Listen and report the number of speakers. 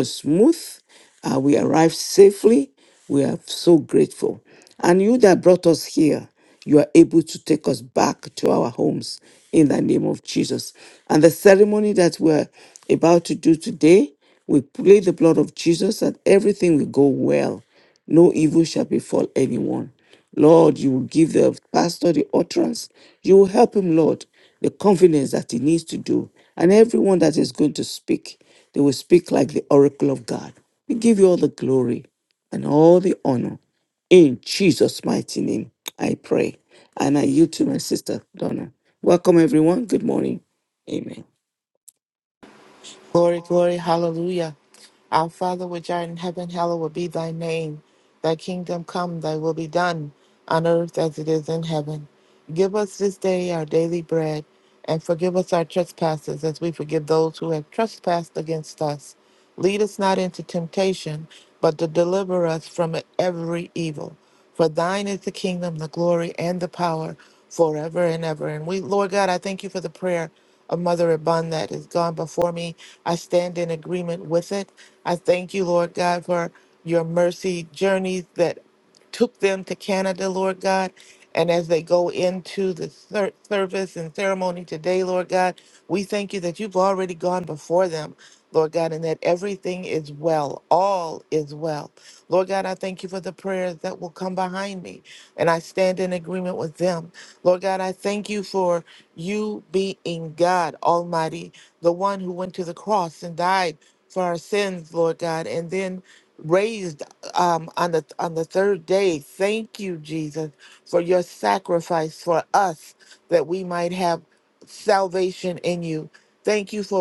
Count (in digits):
2